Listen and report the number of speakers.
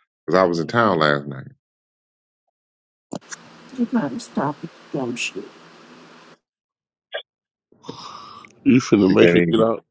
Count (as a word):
three